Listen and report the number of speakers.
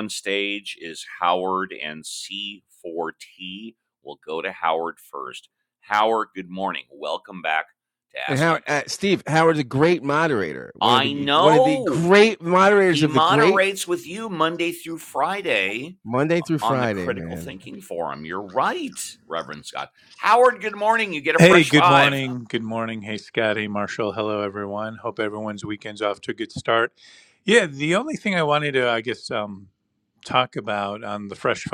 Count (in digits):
3